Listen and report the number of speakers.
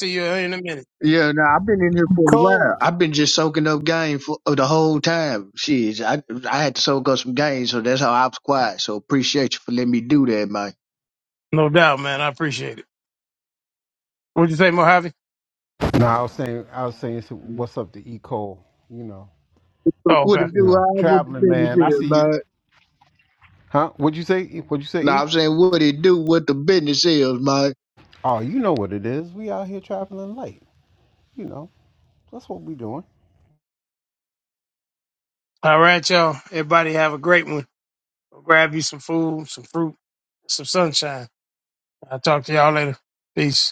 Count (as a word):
three